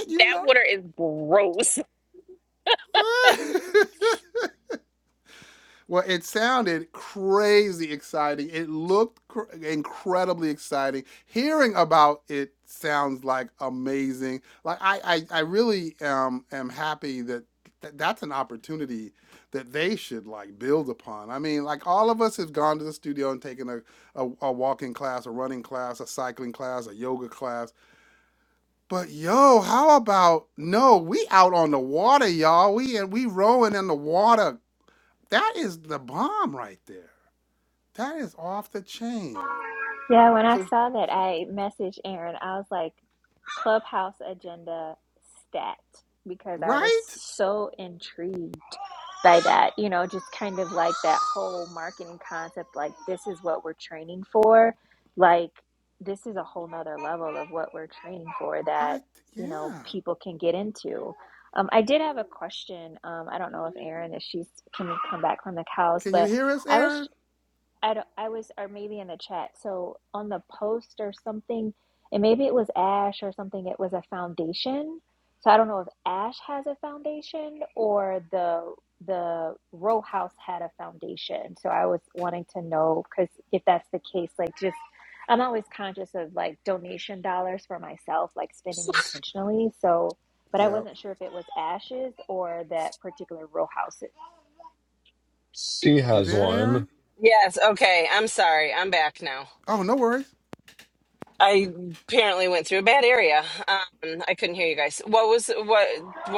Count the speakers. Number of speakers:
five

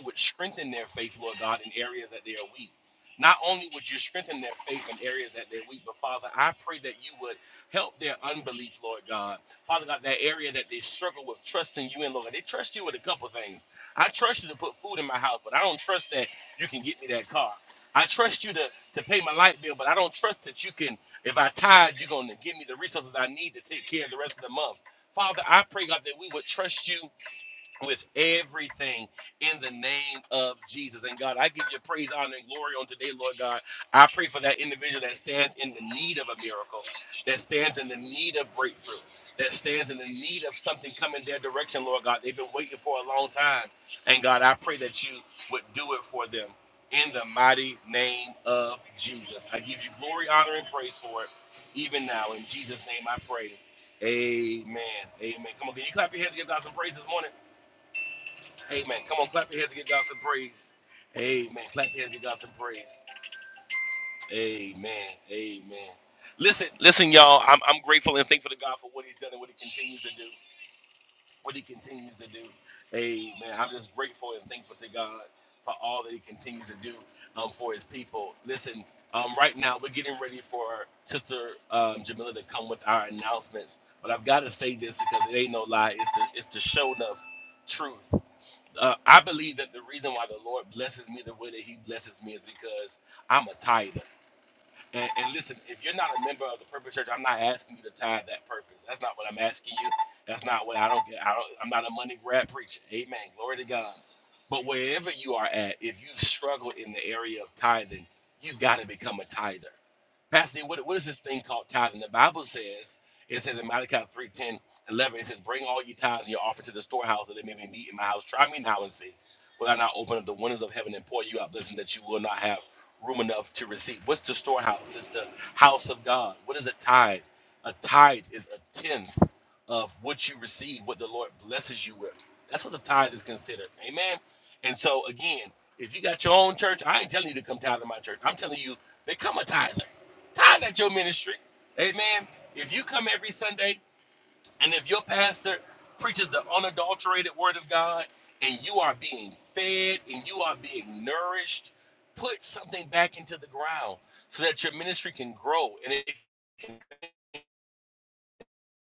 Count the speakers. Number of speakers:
one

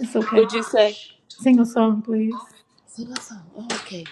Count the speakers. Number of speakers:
two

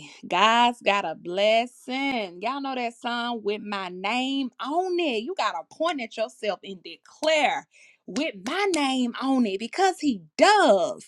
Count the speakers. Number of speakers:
one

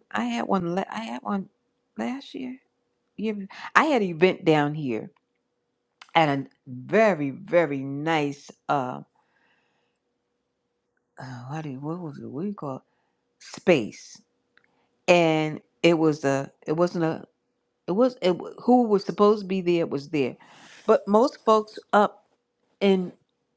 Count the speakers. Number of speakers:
one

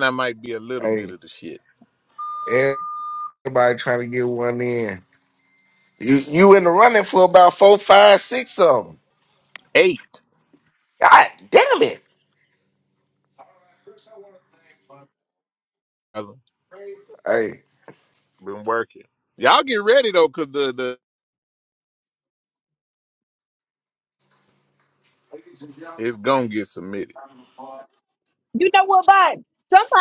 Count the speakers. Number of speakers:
three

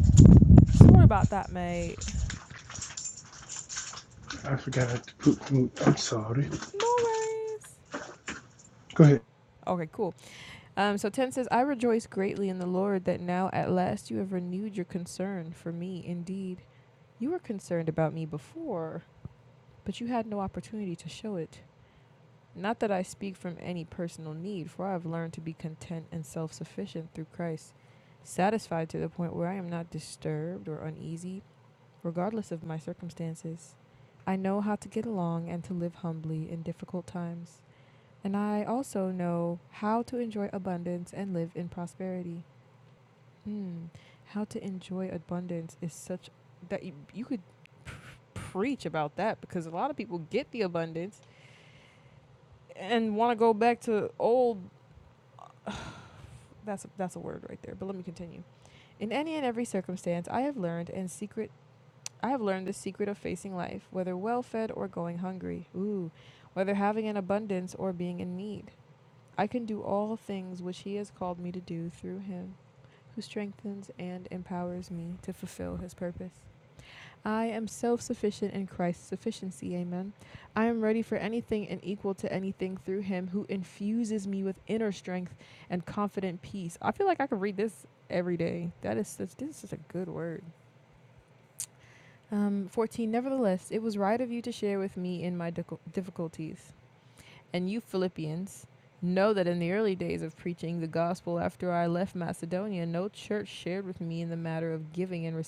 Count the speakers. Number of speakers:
two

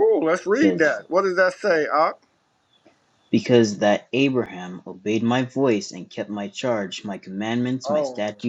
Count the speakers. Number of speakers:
two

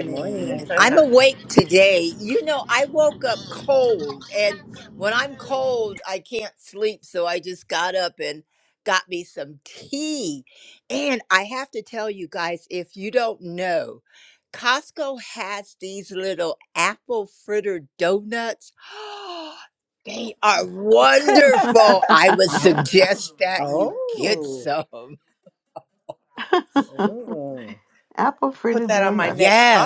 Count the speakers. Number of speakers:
three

